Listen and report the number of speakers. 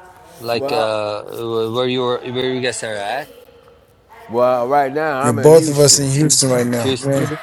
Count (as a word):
three